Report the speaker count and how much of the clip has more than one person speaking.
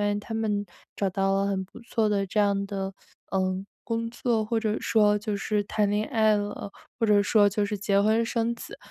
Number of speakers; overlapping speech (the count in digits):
1, no overlap